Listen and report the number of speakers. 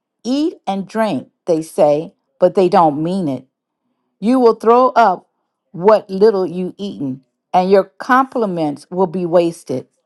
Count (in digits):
1